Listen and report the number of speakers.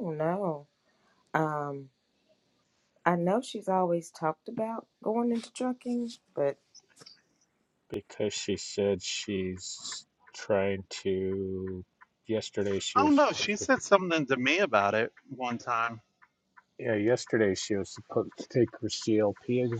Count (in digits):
3